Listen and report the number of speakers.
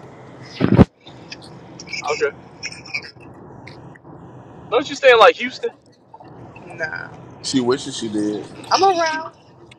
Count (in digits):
3